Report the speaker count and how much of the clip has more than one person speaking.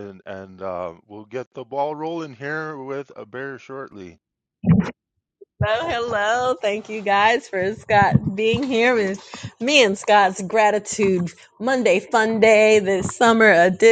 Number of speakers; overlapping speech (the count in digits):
2, no overlap